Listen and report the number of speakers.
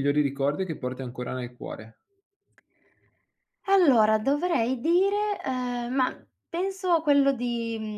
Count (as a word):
two